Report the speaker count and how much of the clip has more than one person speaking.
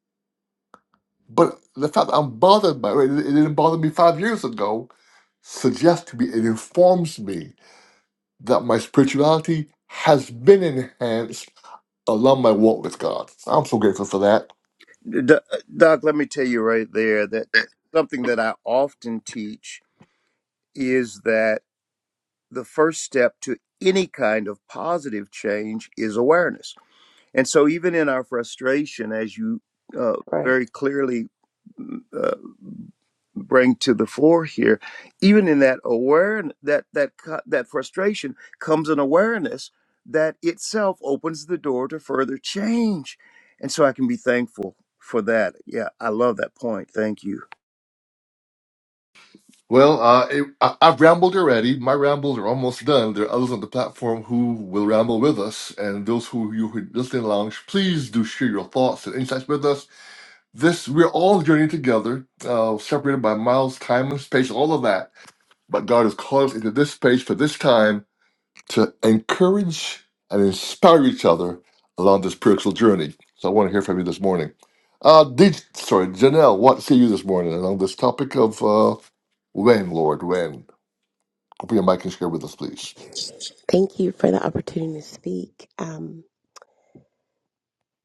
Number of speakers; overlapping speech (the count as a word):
three, under 1%